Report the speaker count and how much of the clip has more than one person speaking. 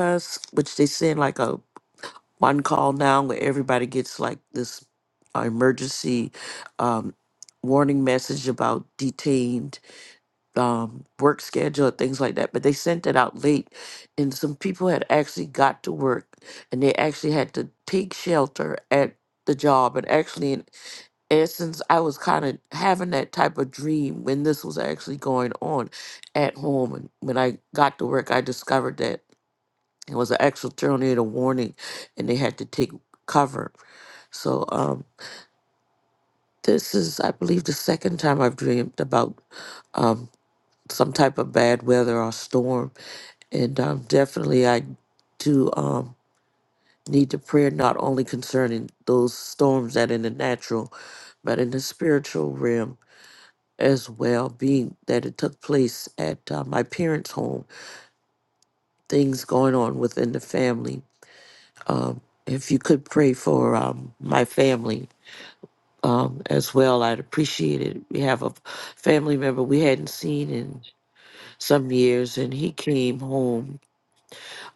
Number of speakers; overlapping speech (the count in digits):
1, no overlap